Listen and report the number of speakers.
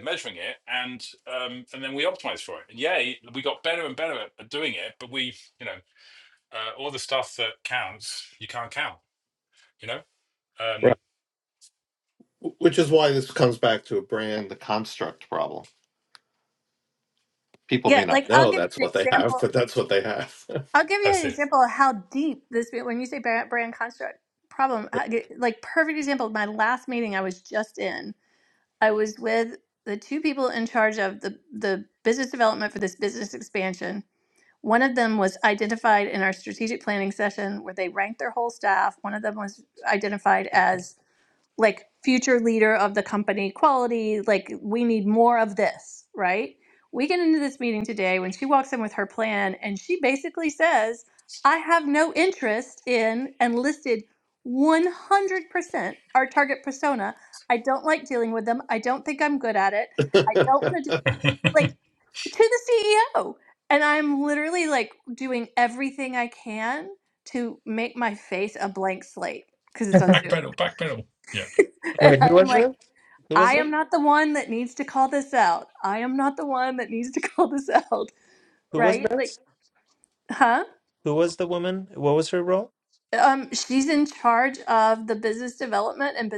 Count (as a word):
four